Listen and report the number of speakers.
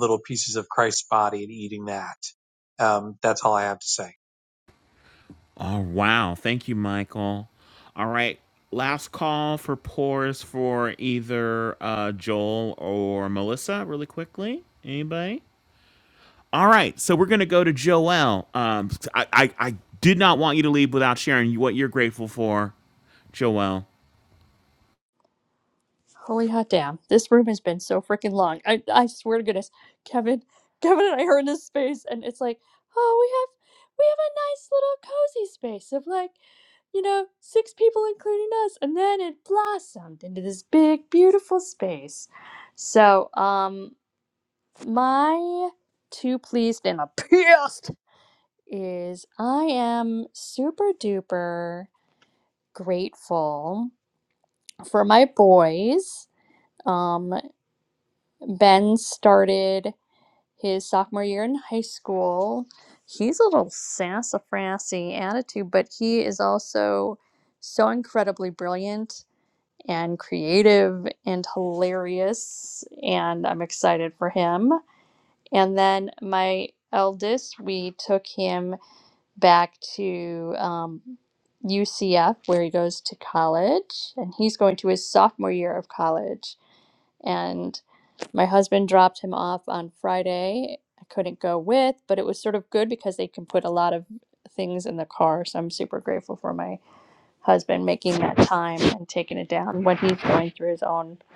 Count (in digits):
3